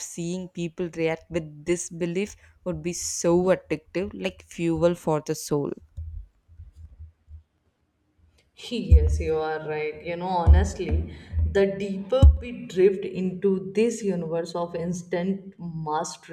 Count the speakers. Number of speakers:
two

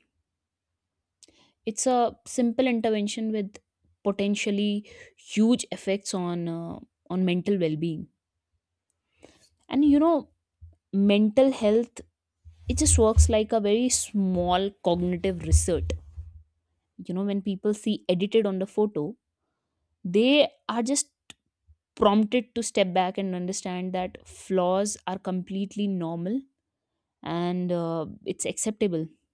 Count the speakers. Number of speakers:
one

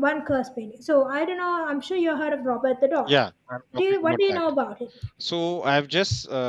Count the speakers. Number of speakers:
two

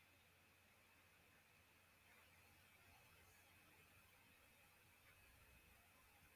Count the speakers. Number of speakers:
zero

